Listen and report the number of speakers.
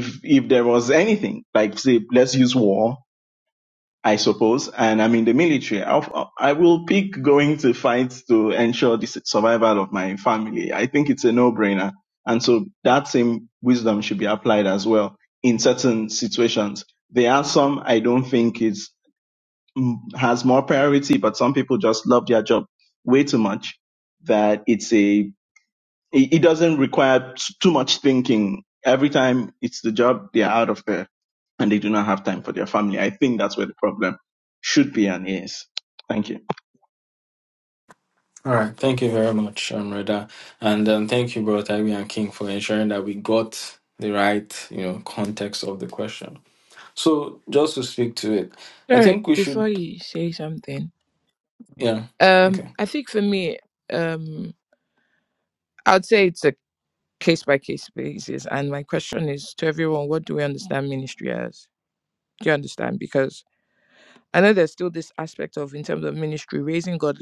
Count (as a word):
three